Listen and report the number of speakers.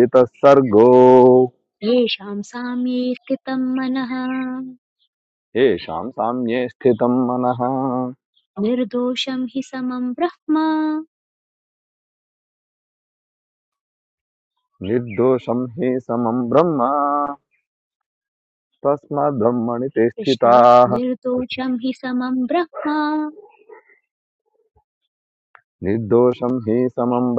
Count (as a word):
two